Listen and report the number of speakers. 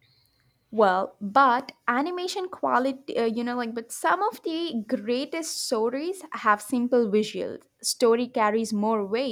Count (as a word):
one